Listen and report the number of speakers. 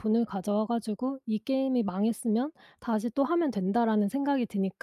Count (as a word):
one